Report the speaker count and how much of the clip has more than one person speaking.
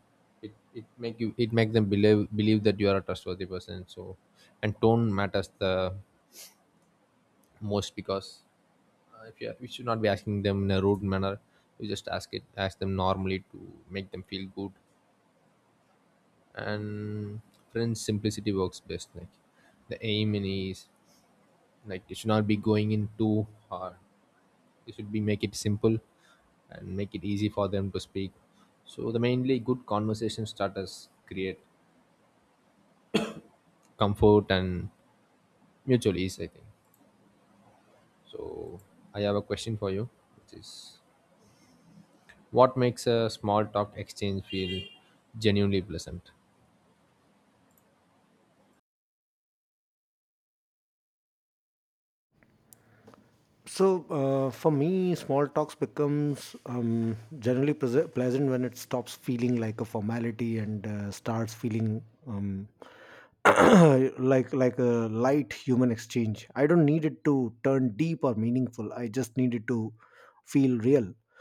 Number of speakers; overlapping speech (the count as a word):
two, no overlap